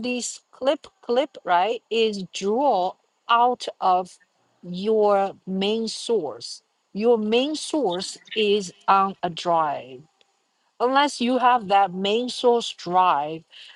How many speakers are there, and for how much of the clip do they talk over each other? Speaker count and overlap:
1, no overlap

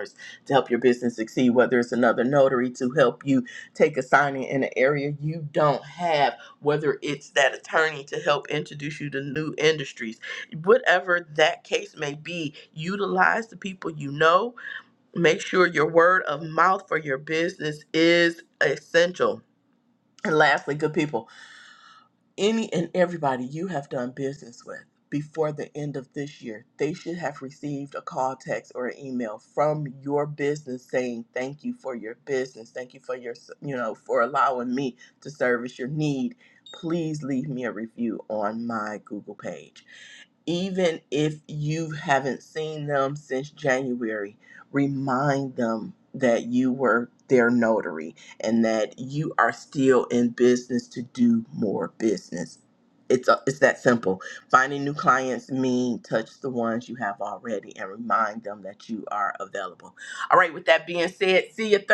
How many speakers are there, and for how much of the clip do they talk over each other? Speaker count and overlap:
1, no overlap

